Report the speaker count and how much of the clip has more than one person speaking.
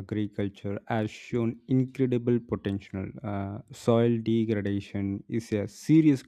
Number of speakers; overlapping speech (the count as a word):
one, no overlap